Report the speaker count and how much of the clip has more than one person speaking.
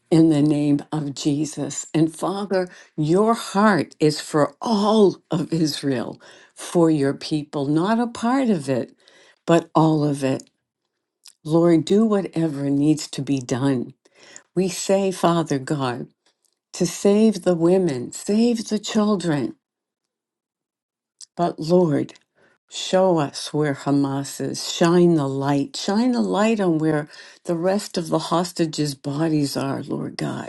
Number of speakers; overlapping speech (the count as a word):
one, no overlap